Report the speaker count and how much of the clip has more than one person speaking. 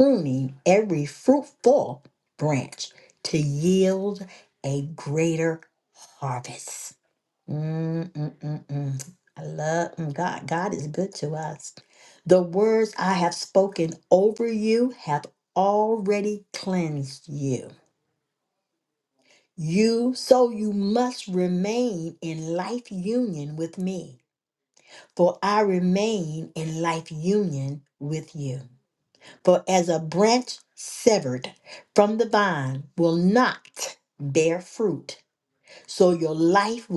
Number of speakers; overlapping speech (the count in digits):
1, no overlap